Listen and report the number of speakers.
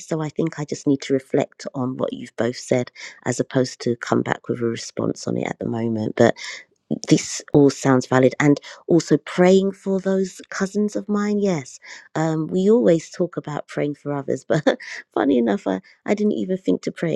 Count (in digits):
1